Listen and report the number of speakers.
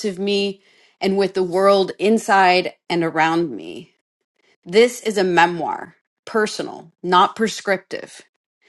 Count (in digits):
1